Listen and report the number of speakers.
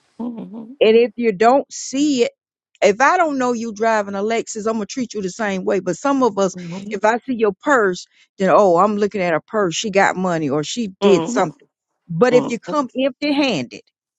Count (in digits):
2